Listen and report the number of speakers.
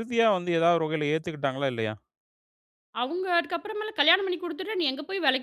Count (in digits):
2